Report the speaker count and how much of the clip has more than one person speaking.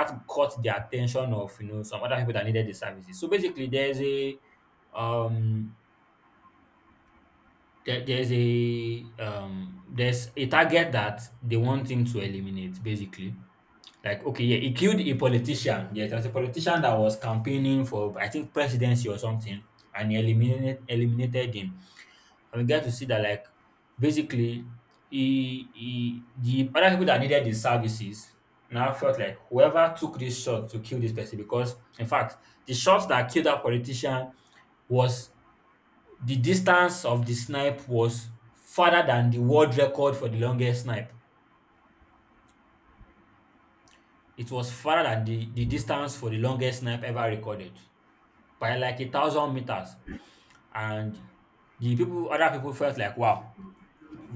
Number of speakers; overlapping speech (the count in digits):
1, no overlap